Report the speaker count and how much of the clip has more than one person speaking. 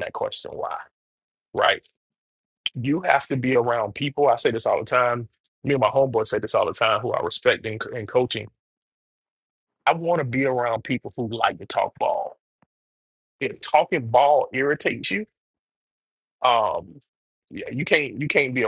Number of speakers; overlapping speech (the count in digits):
1, no overlap